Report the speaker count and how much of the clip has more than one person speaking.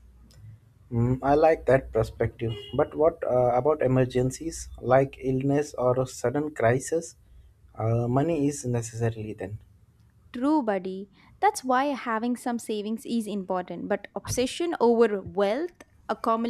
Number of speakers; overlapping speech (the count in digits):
2, no overlap